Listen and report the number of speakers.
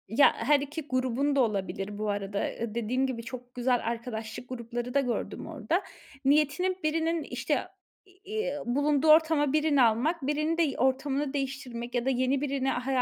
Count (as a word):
one